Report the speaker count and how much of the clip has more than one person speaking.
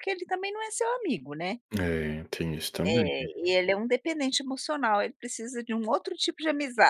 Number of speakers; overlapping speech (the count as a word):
two, about 4%